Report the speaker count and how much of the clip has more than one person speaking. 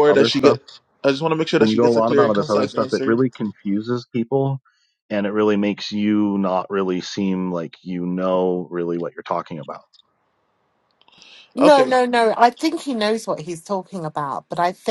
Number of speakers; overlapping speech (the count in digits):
3, about 17%